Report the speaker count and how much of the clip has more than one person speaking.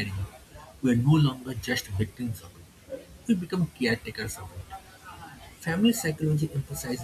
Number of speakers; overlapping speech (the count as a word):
one, no overlap